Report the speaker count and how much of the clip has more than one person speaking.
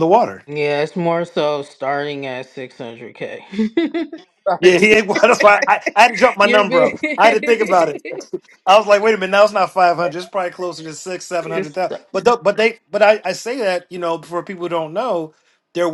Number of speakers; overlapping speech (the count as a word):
two, about 9%